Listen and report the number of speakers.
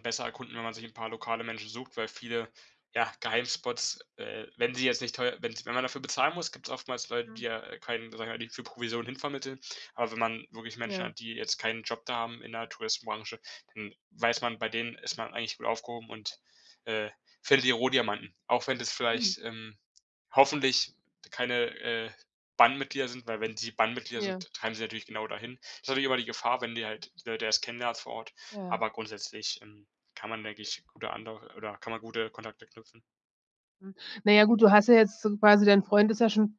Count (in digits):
2